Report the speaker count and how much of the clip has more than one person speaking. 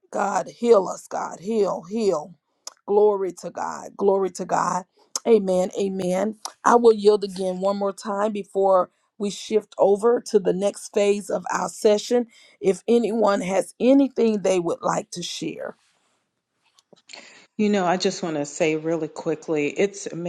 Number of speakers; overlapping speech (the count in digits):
2, no overlap